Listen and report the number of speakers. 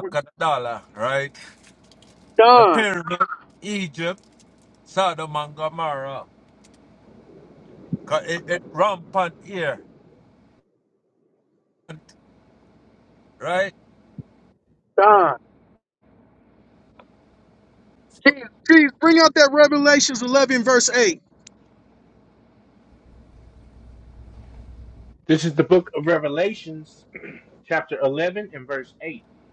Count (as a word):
three